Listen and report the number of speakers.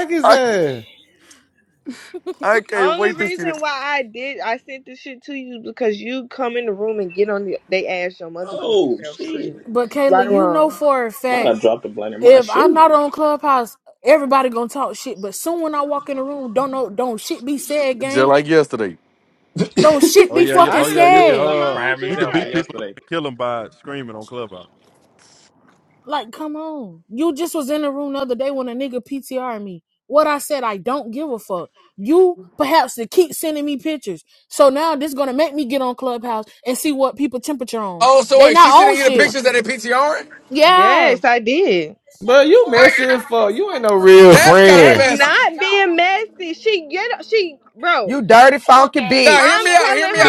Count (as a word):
eight